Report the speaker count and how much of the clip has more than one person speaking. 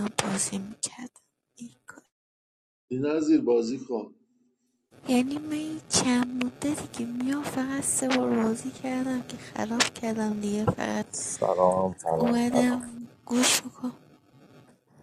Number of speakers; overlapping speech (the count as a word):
three, about 5%